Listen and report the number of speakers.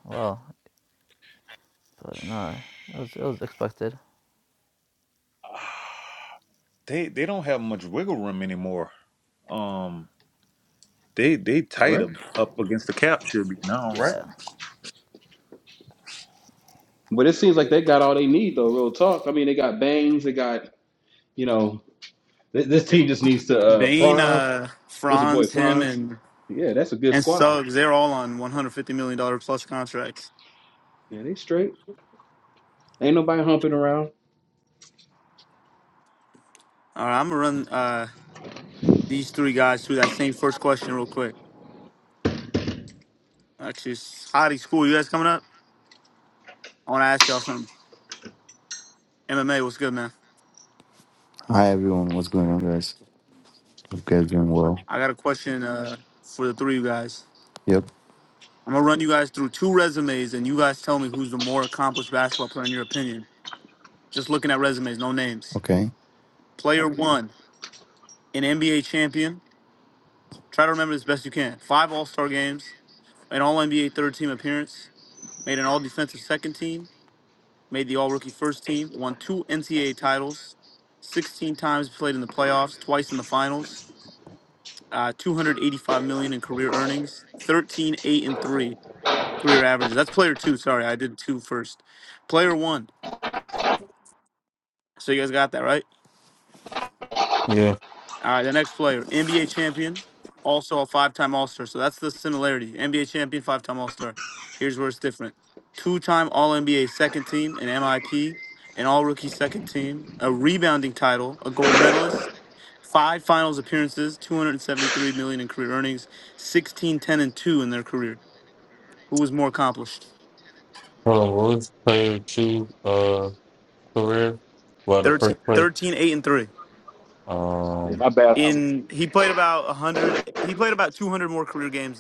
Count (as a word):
six